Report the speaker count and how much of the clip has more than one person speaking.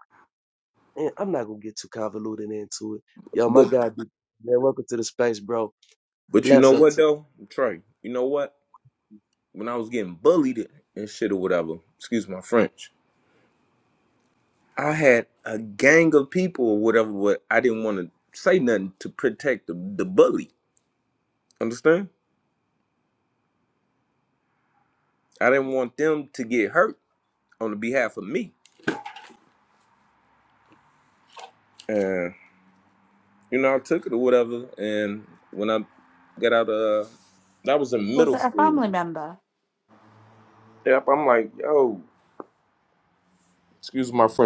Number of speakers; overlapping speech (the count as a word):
three, about 4%